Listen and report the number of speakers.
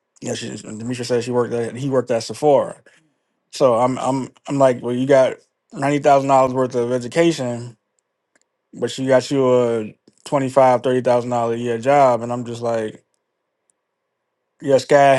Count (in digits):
1